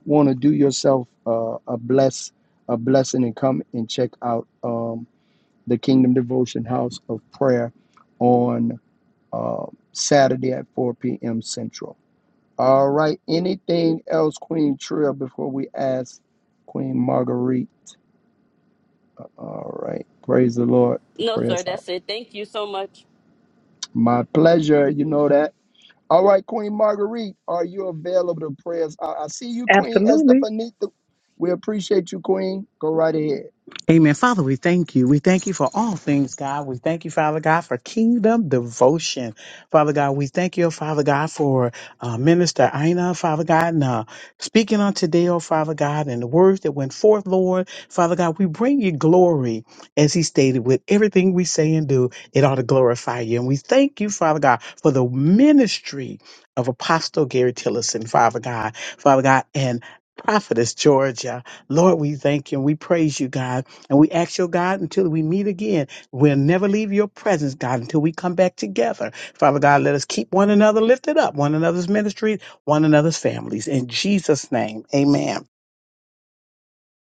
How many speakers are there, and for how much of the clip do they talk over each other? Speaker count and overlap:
three, about 1%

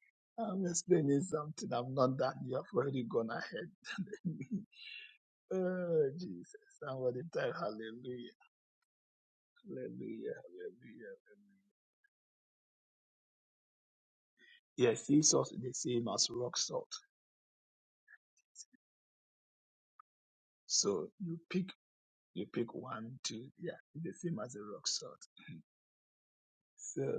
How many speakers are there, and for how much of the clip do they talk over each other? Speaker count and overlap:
one, no overlap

